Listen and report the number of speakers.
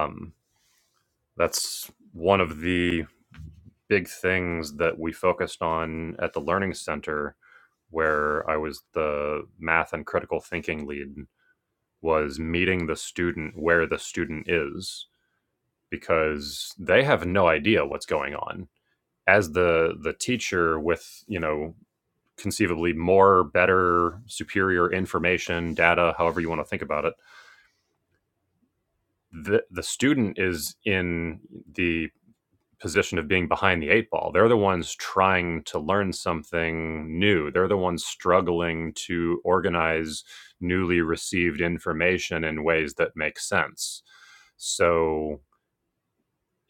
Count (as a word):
one